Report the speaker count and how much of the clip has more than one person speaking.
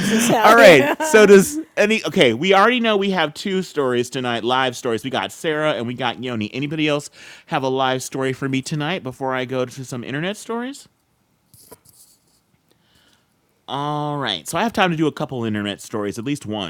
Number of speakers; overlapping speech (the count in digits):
2, about 5%